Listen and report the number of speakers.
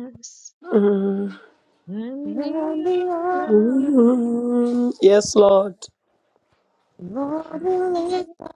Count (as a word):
three